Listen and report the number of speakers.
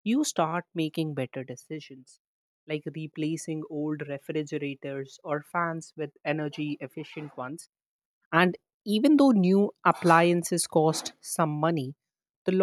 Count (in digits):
1